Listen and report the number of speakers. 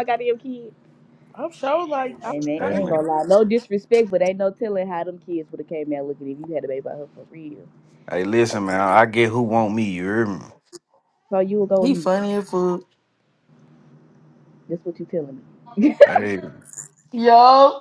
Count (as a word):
four